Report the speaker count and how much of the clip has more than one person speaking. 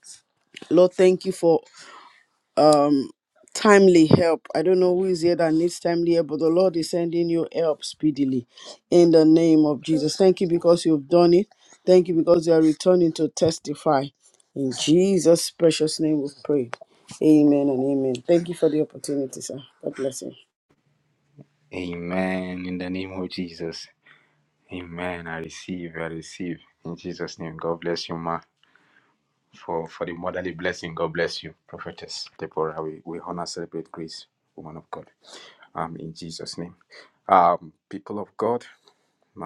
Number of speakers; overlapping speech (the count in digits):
2, no overlap